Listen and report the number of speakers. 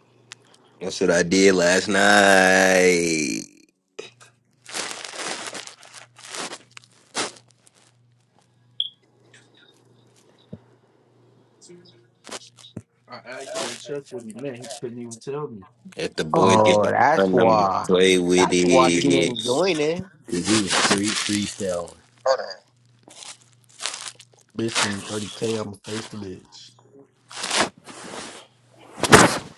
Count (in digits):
4